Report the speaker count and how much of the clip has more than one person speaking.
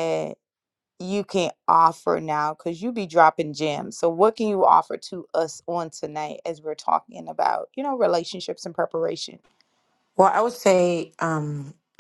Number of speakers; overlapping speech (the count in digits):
2, no overlap